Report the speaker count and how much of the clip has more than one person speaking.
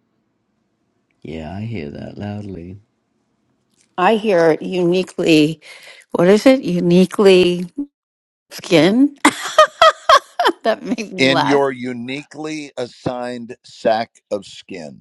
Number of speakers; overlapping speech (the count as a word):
three, about 3%